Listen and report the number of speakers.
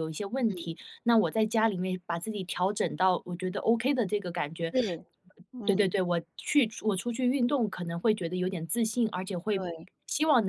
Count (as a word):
two